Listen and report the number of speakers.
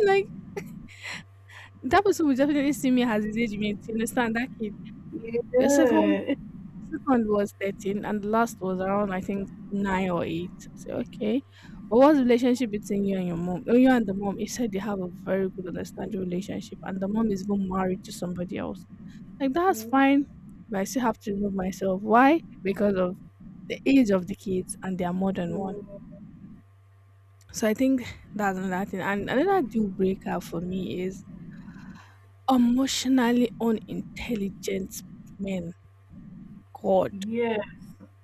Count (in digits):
2